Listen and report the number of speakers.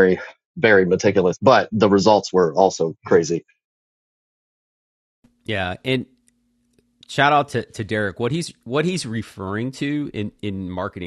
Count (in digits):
2